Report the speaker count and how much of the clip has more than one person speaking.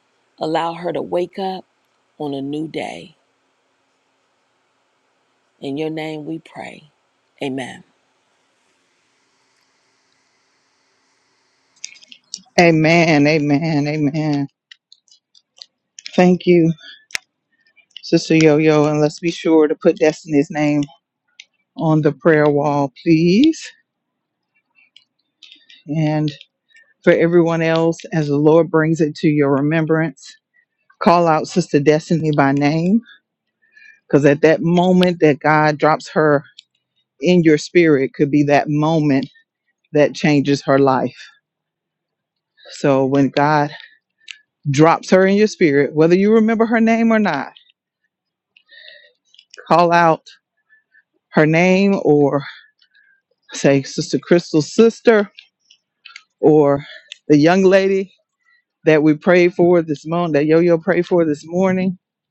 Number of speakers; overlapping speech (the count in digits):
2, no overlap